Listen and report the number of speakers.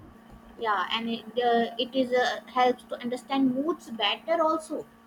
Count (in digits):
1